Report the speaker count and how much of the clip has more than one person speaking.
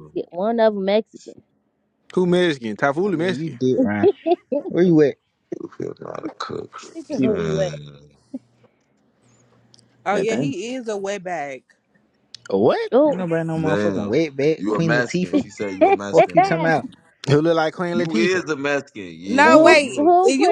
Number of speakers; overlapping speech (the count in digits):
5, about 26%